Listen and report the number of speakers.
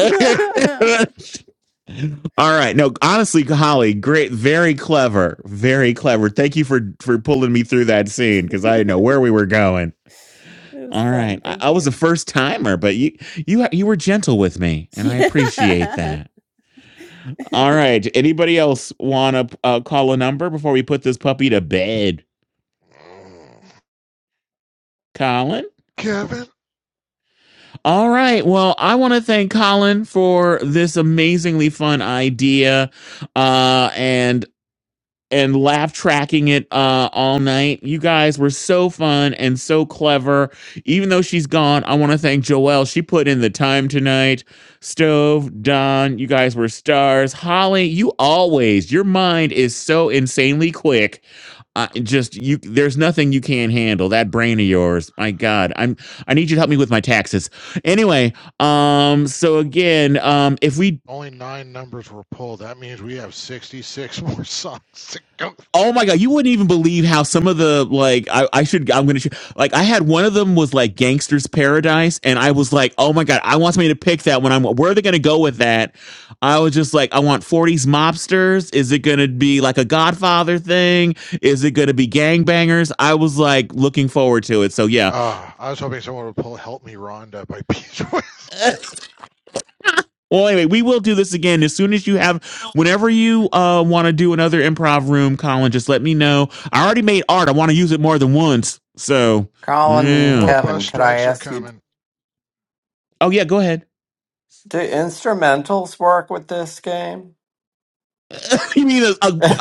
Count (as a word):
four